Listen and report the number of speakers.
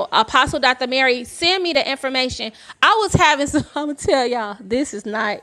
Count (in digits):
1